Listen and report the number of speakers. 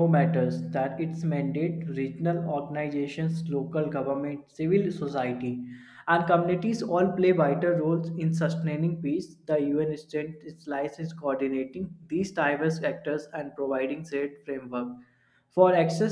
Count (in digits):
1